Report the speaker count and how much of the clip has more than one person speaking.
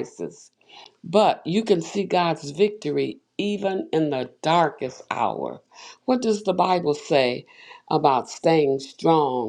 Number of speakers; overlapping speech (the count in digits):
1, no overlap